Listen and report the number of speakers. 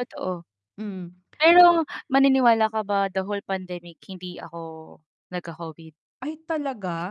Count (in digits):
2